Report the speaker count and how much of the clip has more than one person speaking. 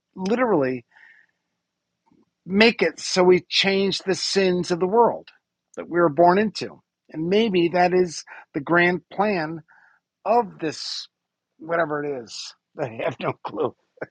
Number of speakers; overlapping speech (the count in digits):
1, no overlap